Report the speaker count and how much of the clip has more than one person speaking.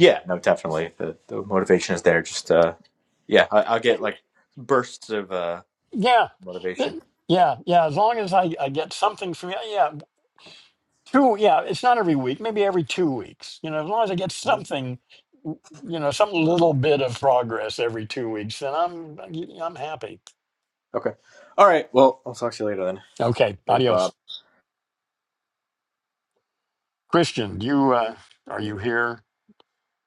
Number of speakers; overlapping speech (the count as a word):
two, about 2%